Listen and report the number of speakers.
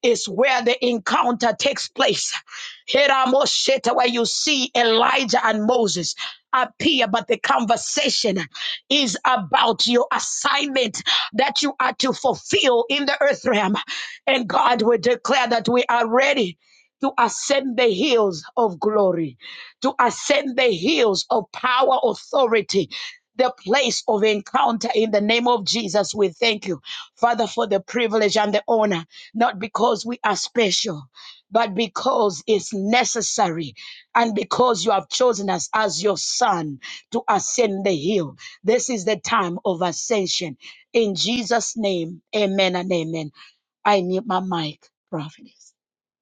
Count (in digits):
1